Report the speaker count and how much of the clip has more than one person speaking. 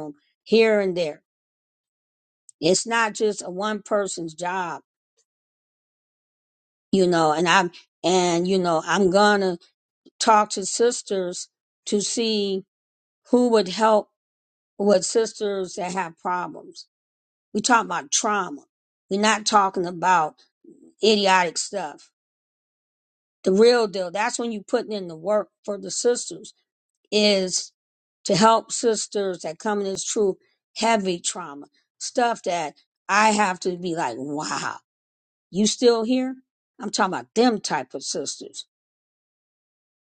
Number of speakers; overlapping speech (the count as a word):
one, no overlap